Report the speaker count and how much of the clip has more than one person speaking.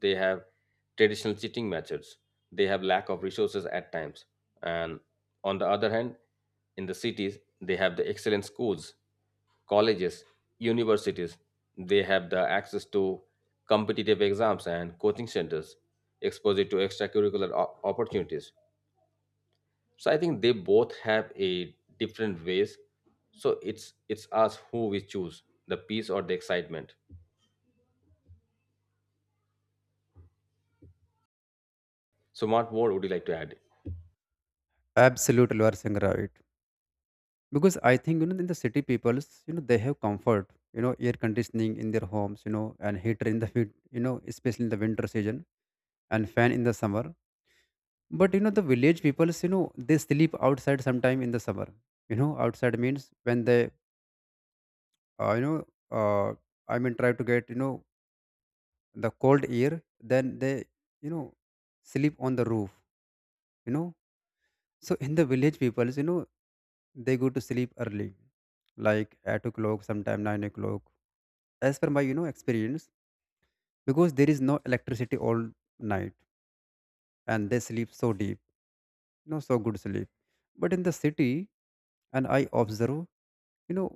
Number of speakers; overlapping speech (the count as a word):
two, no overlap